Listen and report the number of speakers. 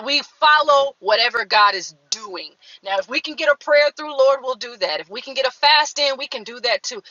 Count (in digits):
1